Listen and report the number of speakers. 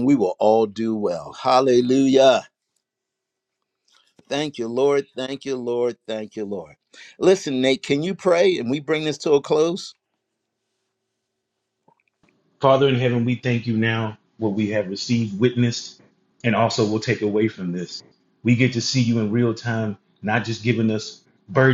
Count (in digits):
2